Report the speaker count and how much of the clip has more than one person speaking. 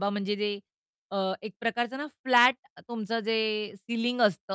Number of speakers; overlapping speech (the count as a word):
one, no overlap